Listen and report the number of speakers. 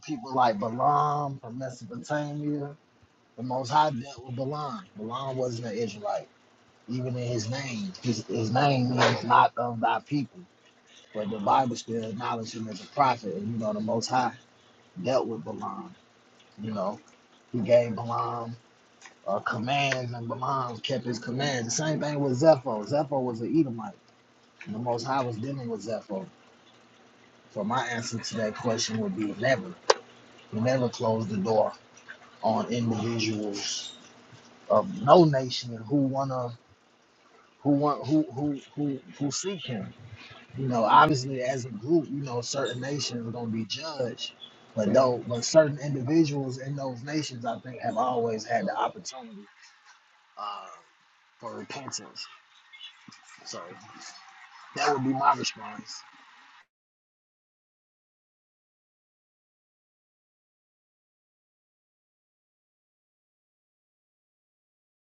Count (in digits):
1